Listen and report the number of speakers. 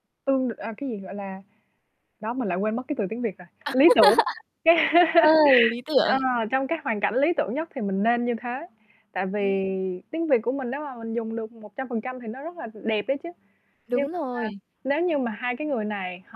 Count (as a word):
two